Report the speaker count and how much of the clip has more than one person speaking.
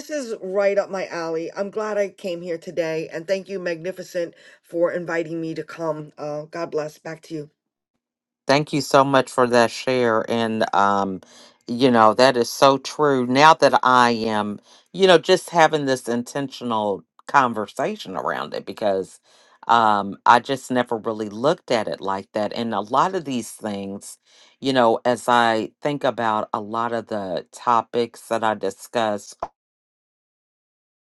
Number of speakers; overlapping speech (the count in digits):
2, no overlap